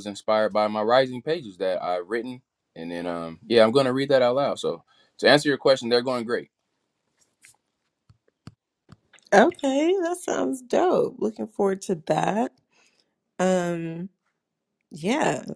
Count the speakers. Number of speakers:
two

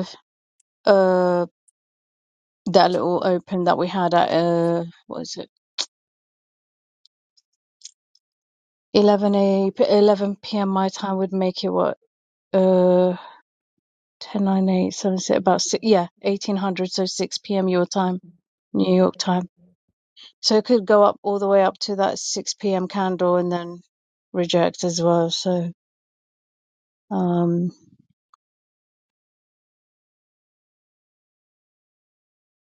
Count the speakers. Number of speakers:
one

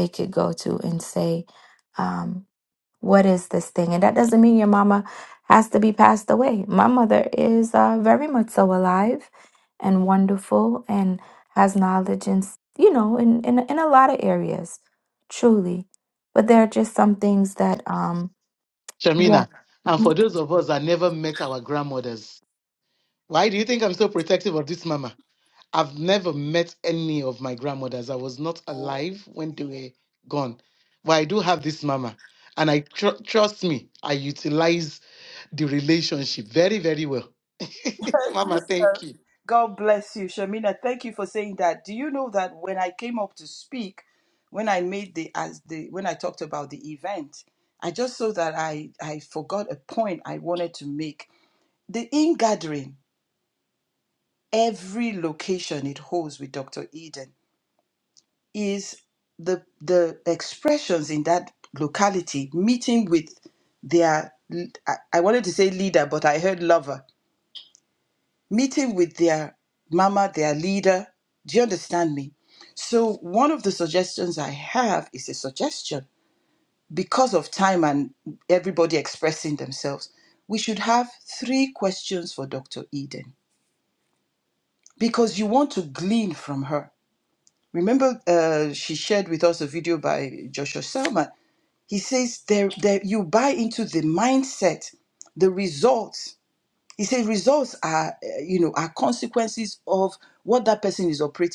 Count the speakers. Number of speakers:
three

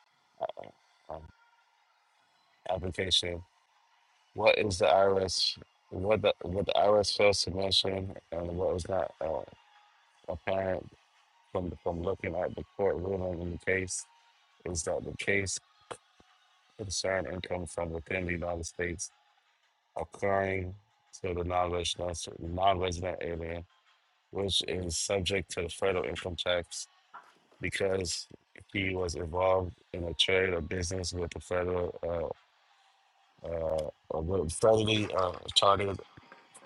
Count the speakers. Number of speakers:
one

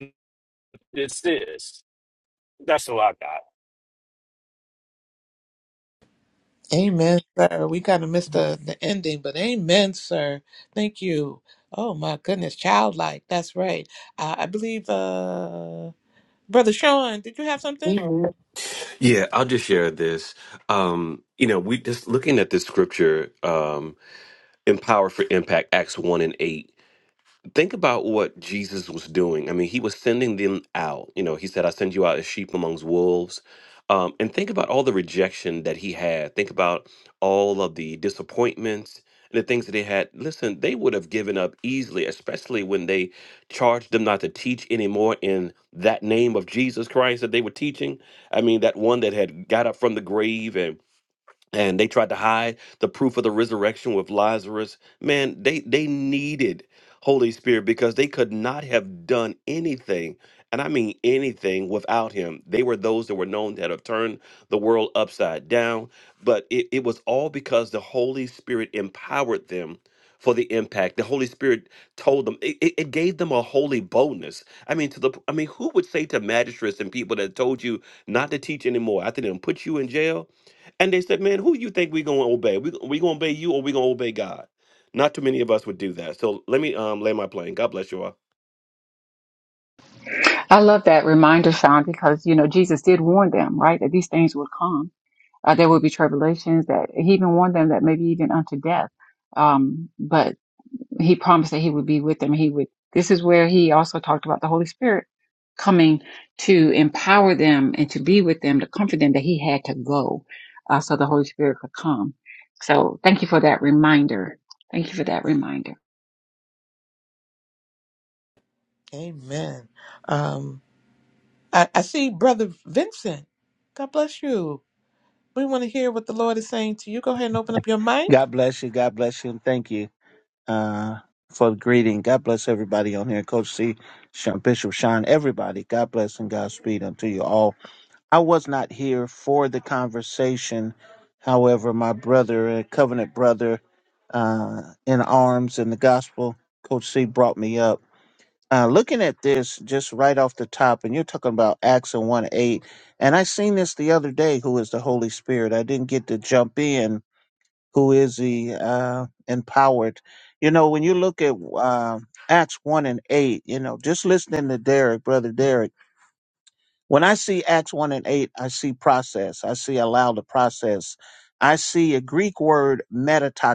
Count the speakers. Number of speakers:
five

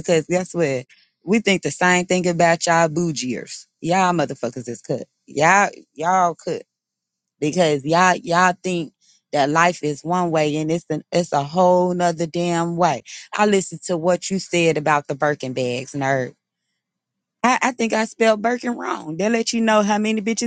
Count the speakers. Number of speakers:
one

